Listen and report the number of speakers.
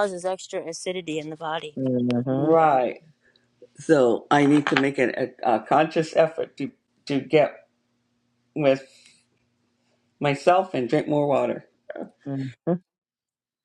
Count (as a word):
three